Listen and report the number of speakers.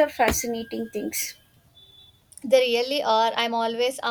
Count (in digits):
2